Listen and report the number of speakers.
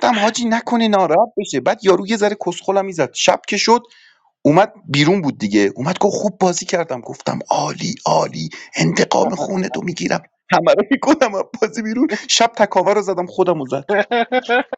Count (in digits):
1